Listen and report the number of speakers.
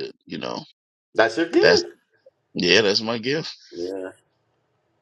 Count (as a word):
two